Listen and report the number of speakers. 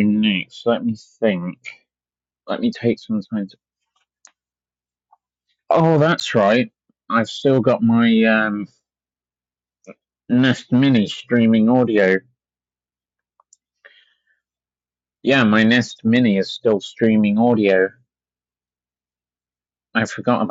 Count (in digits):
1